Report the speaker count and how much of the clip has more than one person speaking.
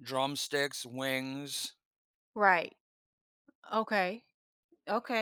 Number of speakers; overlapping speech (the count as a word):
two, no overlap